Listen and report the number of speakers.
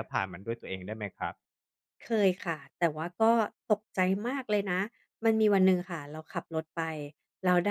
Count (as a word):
two